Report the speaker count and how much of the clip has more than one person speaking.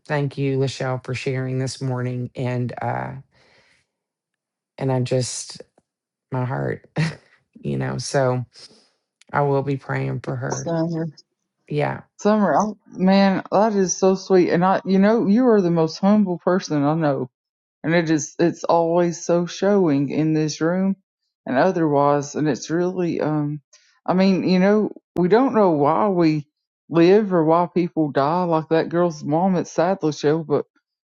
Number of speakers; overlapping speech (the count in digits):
2, about 1%